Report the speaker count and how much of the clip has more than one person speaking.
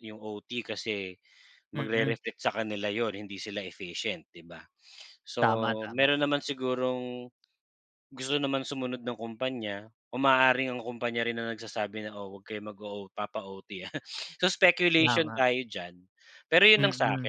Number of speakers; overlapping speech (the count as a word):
two, about 9%